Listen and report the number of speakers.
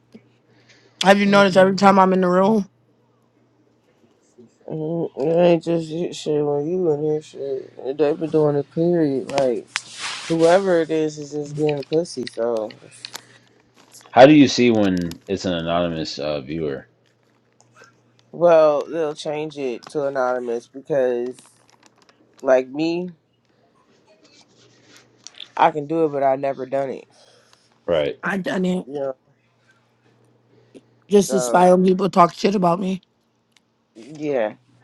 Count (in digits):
3